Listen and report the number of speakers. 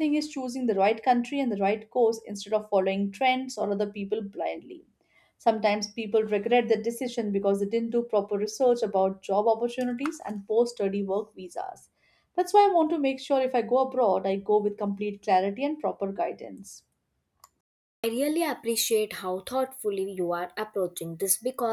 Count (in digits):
2